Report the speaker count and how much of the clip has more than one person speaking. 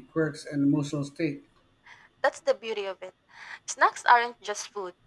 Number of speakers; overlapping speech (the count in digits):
2, no overlap